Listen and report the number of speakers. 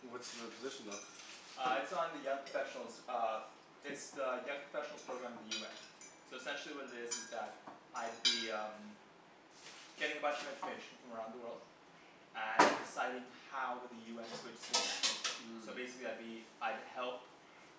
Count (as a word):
two